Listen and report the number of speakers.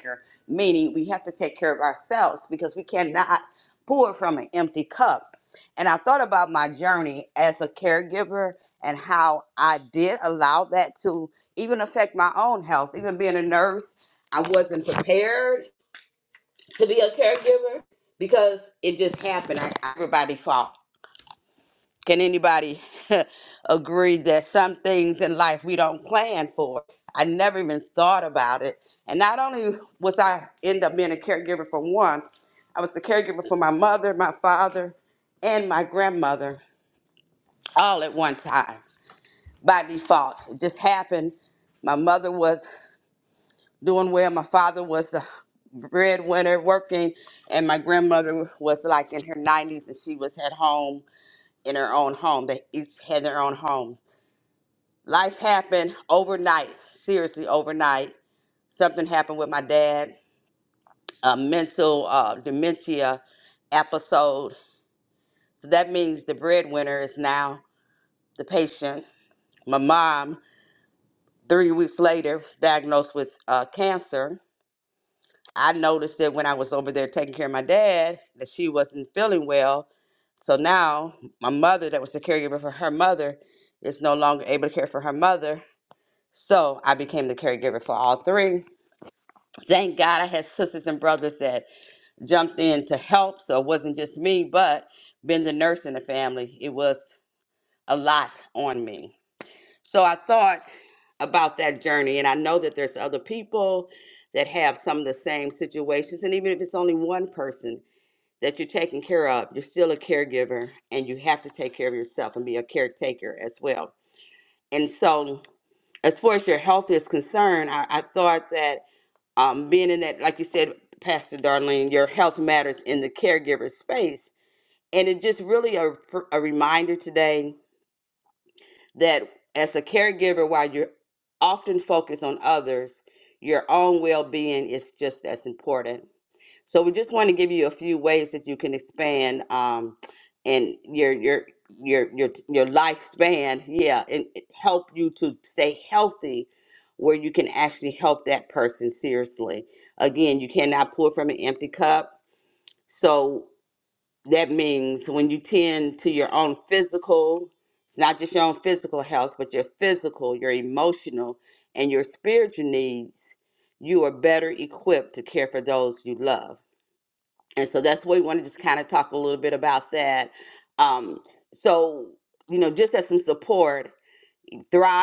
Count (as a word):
one